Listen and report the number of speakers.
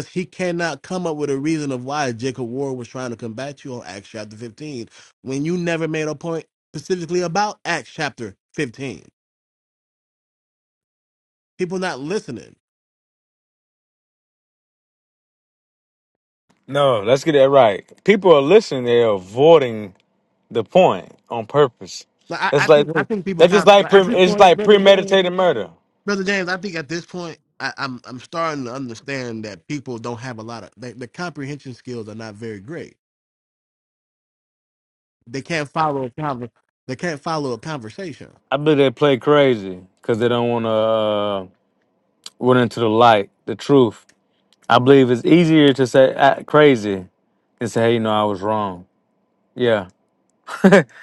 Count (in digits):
2